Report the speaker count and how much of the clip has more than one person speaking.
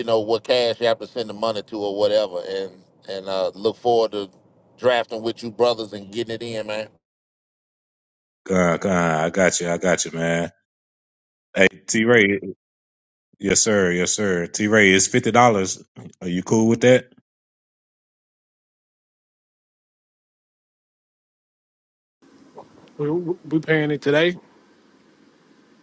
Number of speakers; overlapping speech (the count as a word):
three, no overlap